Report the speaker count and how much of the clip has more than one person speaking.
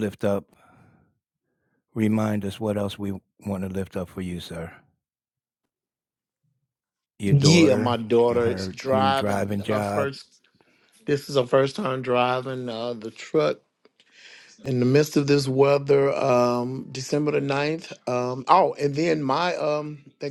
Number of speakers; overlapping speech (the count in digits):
2, about 14%